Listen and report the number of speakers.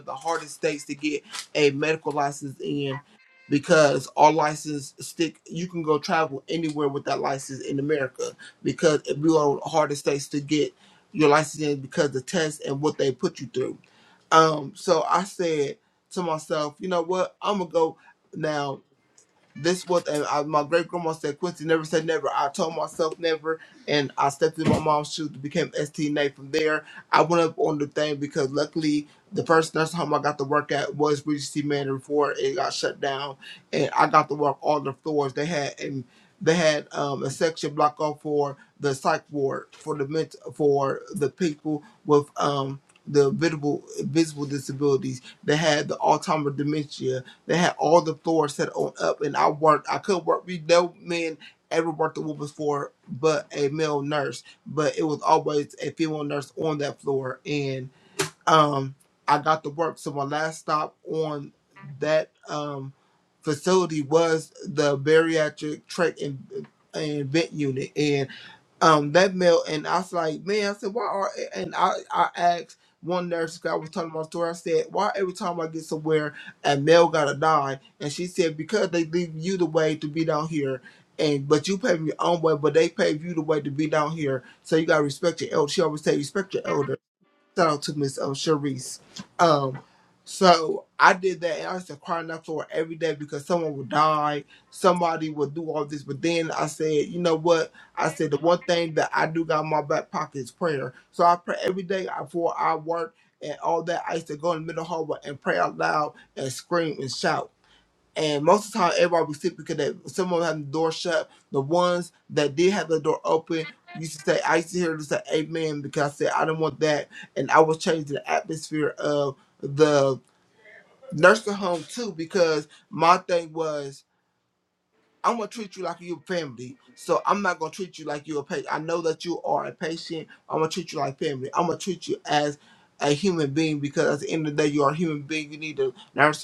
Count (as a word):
one